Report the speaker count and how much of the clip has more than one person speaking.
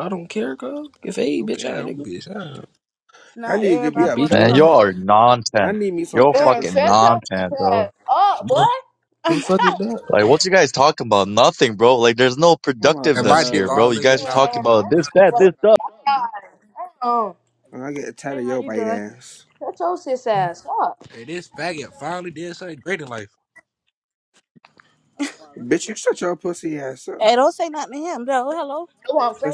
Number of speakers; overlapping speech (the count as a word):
six, about 23%